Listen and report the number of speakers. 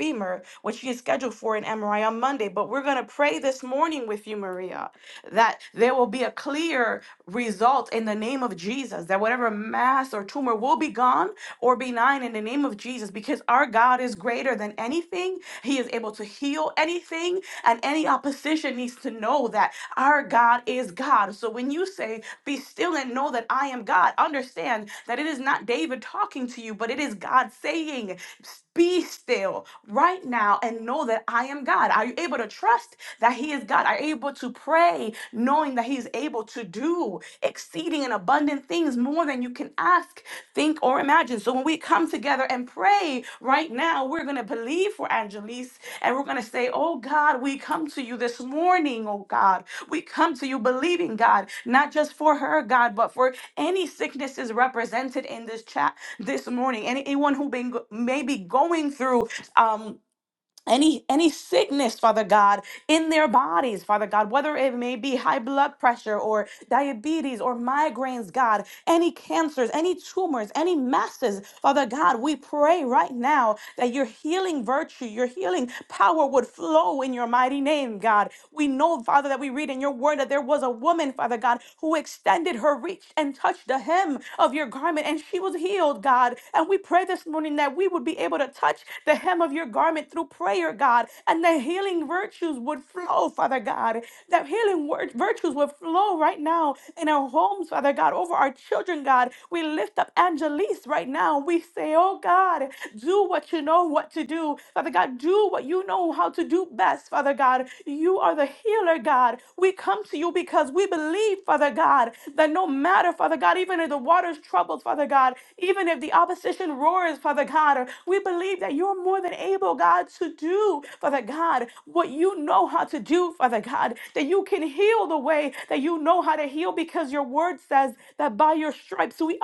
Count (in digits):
1